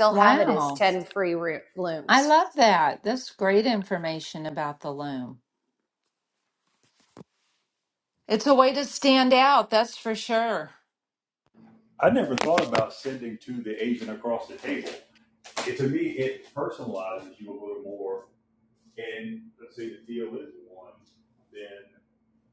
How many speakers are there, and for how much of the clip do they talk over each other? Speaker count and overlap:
three, about 3%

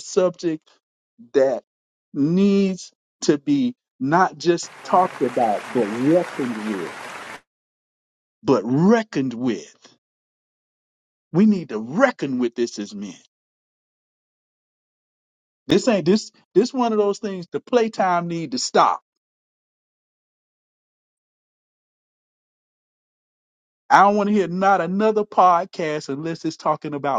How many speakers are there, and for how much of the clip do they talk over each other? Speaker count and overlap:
one, no overlap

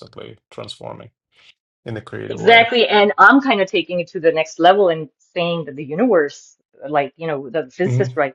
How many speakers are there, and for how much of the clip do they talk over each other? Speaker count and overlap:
two, about 7%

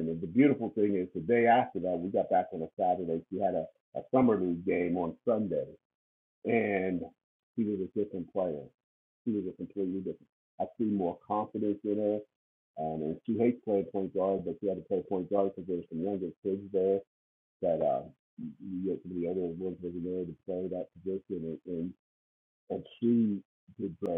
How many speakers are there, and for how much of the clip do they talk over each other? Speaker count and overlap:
one, no overlap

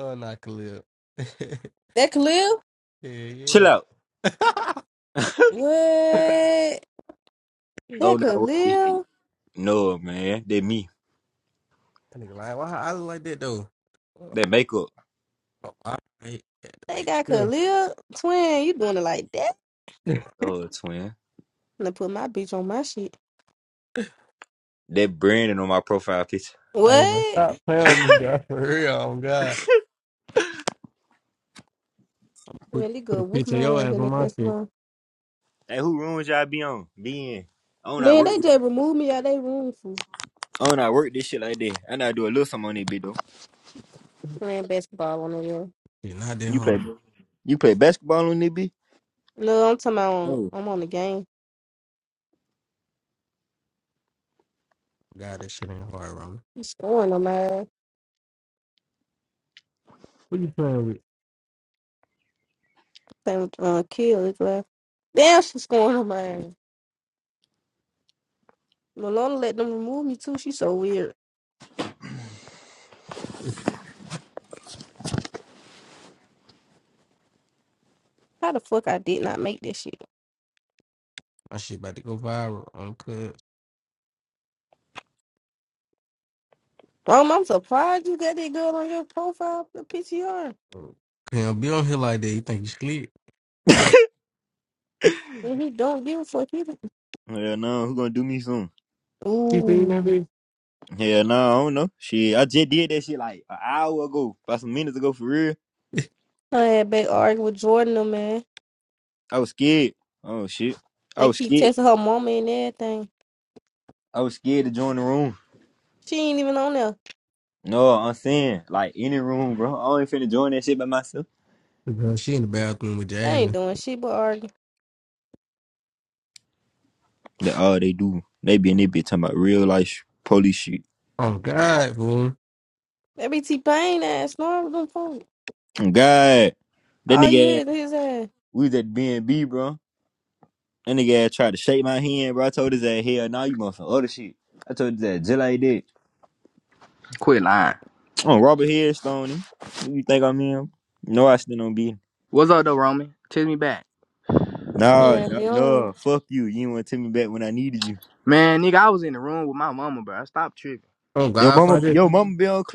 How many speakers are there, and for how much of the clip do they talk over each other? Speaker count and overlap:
four, about 5%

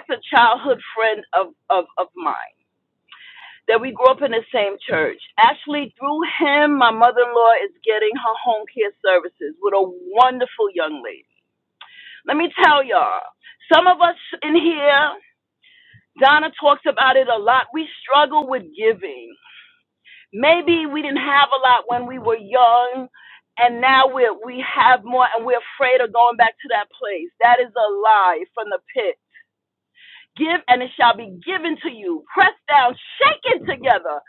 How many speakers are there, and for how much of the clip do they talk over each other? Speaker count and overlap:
one, no overlap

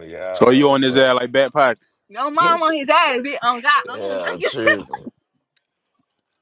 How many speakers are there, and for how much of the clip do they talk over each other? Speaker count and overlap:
three, about 24%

